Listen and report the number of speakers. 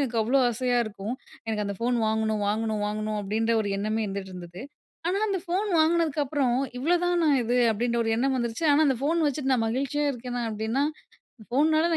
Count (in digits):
1